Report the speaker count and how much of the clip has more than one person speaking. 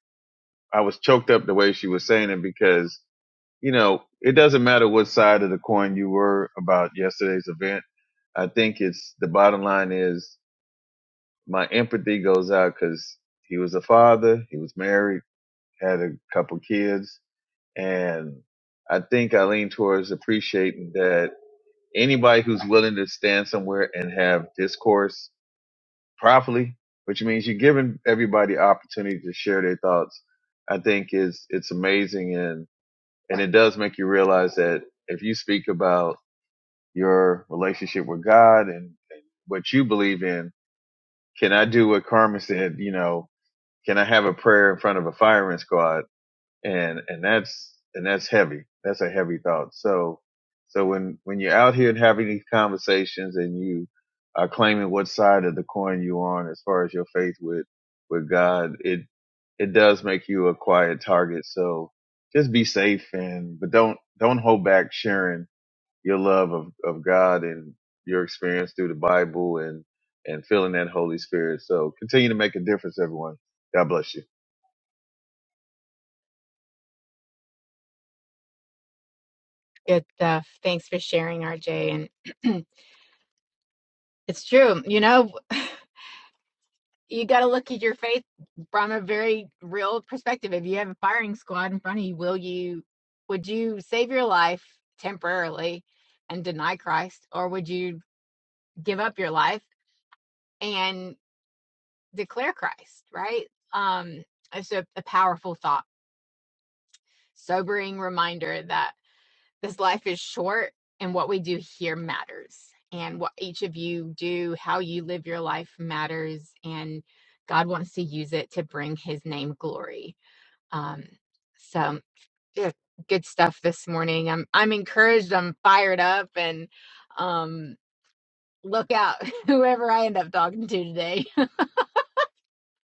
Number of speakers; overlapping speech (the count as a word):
two, no overlap